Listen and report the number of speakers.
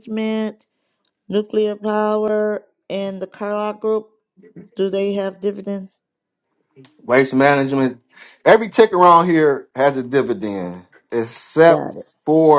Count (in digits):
2